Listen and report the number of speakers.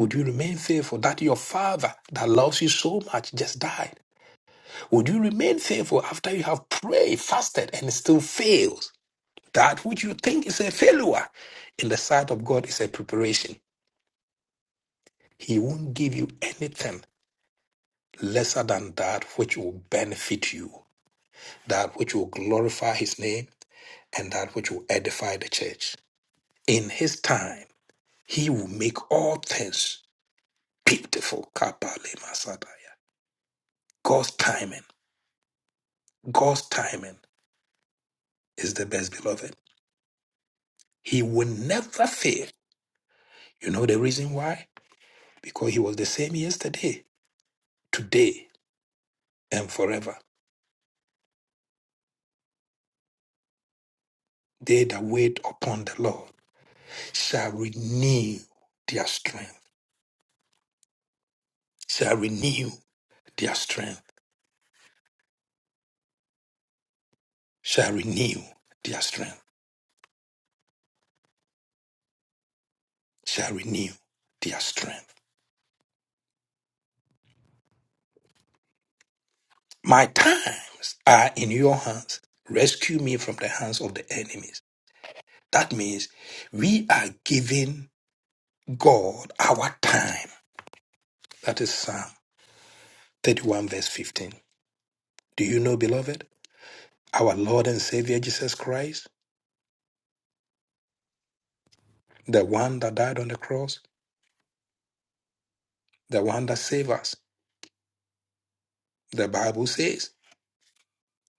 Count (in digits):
1